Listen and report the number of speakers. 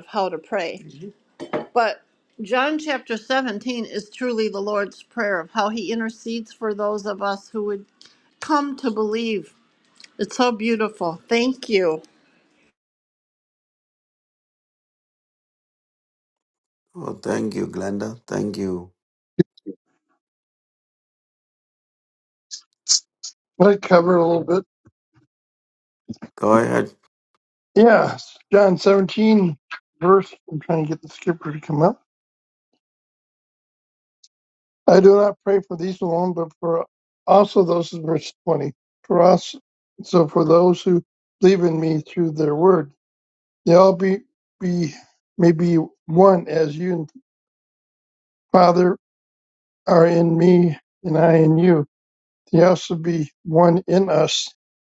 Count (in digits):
3